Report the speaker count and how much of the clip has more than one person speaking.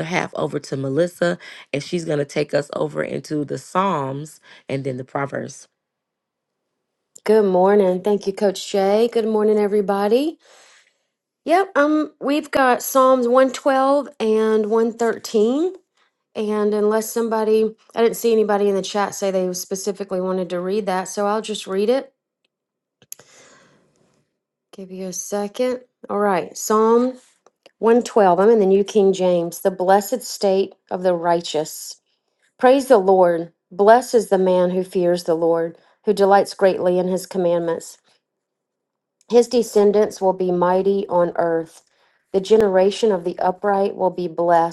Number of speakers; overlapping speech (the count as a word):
two, no overlap